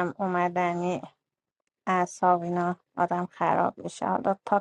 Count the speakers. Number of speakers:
one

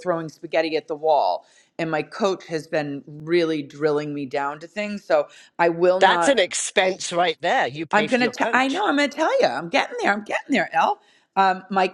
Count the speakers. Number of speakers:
two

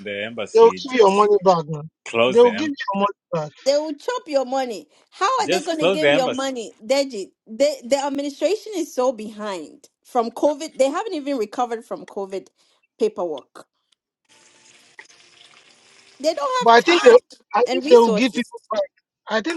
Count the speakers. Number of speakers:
three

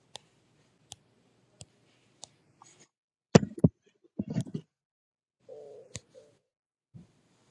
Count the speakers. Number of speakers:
zero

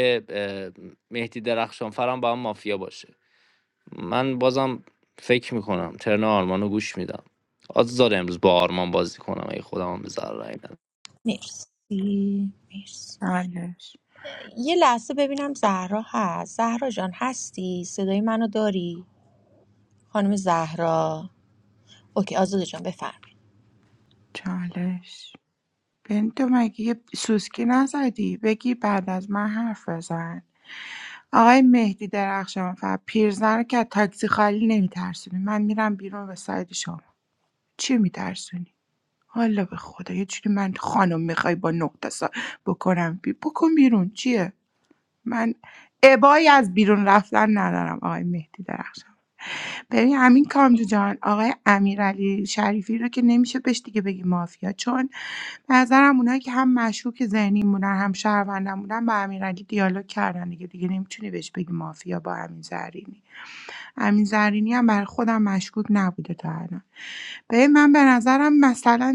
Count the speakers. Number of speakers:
three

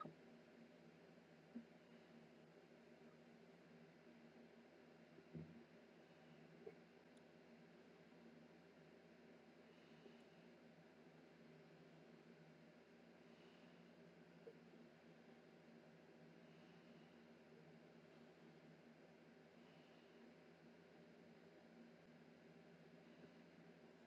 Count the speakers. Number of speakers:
zero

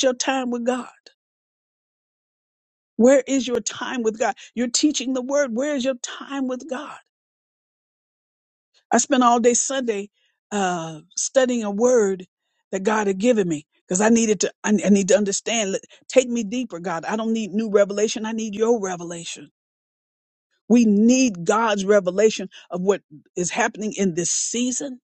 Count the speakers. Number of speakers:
one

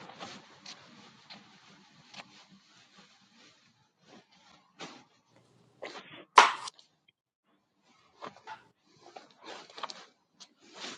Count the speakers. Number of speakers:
zero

